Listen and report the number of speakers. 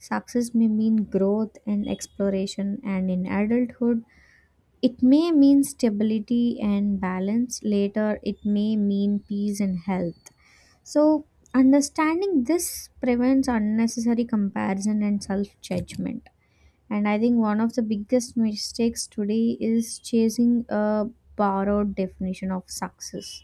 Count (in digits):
1